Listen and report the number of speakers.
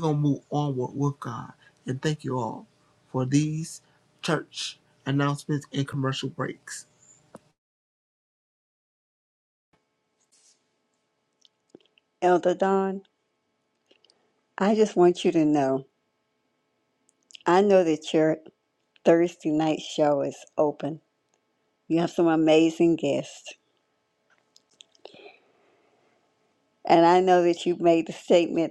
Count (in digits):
2